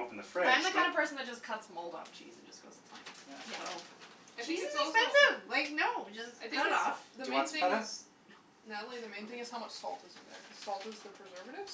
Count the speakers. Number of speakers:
three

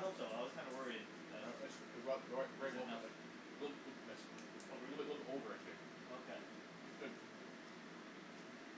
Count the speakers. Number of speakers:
two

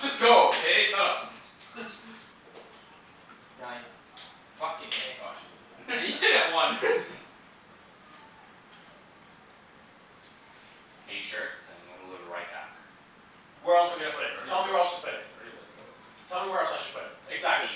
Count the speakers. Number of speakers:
four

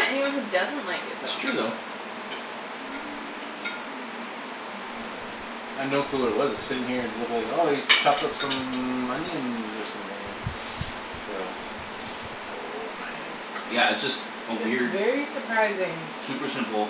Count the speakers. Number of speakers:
four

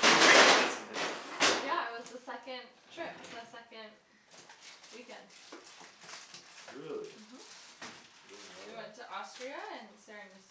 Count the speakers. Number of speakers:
two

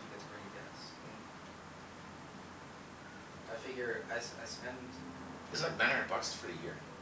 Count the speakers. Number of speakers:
two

